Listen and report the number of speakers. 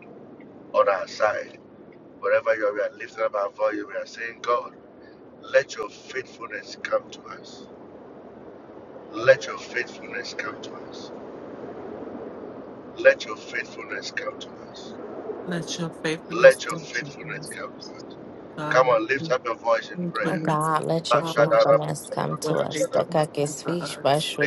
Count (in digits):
3